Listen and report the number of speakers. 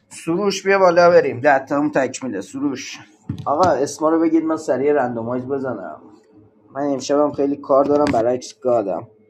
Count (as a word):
one